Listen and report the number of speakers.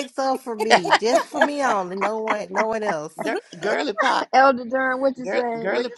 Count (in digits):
3